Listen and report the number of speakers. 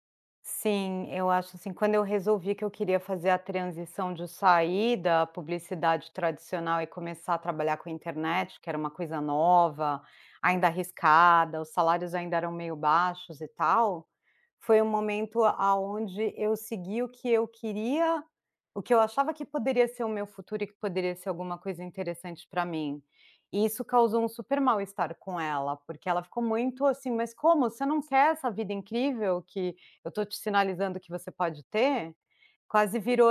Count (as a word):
one